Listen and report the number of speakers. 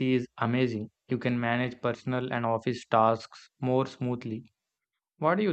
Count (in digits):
1